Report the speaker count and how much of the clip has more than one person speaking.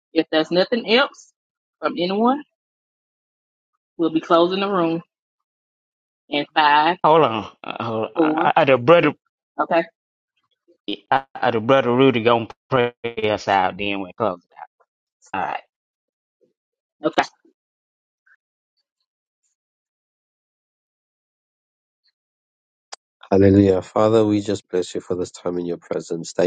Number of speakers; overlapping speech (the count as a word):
three, about 1%